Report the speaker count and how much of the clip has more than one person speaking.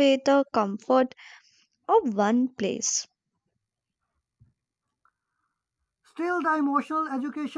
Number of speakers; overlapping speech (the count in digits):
2, no overlap